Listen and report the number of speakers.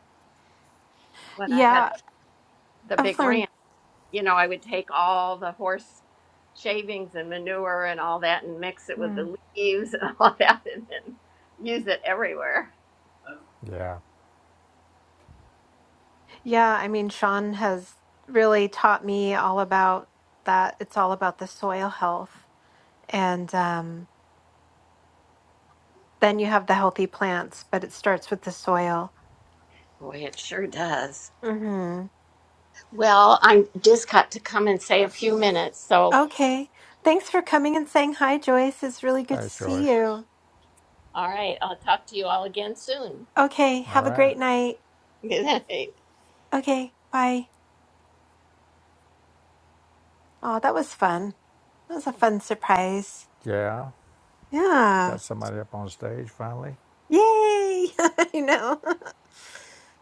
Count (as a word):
three